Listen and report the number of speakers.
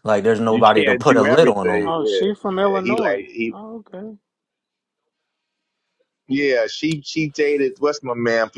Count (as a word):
three